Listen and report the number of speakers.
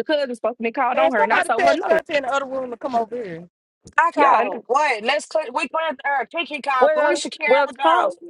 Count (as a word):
three